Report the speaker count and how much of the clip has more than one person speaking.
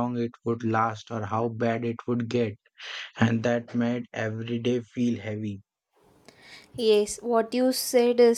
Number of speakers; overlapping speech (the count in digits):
2, no overlap